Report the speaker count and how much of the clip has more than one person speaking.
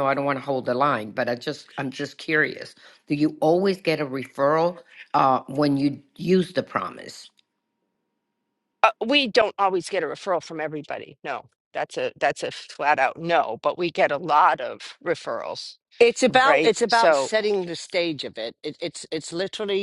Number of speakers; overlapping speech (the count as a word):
three, about 4%